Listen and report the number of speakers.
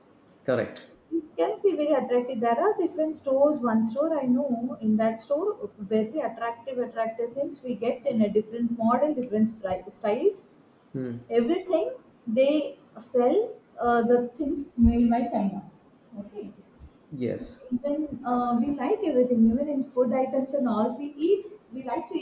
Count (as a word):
two